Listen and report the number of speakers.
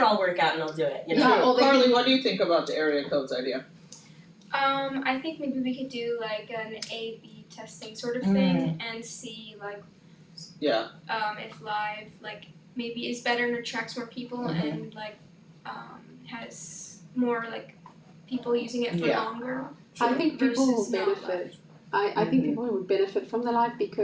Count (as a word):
four